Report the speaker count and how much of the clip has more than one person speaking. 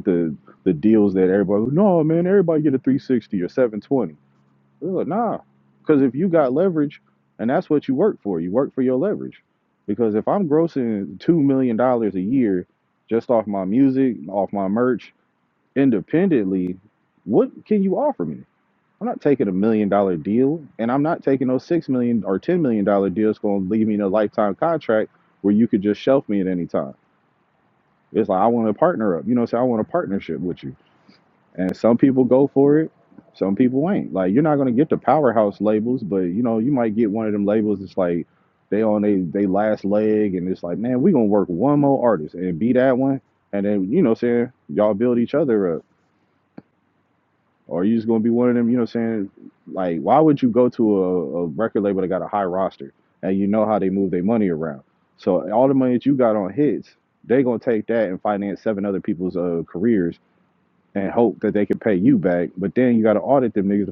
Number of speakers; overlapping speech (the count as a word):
one, no overlap